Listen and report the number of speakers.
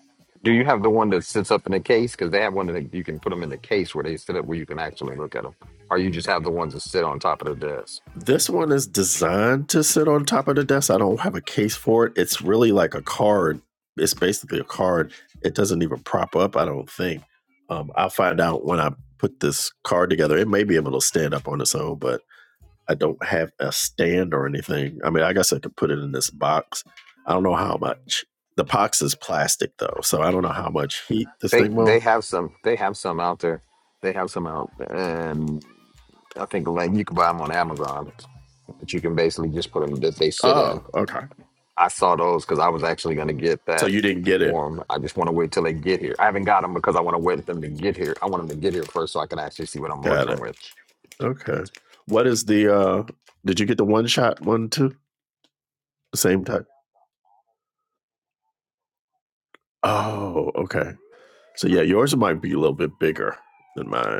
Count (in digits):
2